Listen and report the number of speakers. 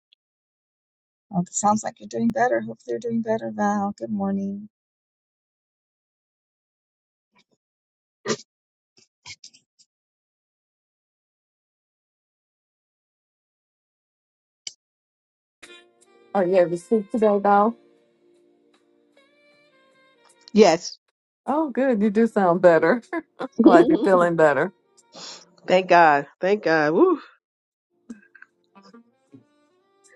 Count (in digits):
3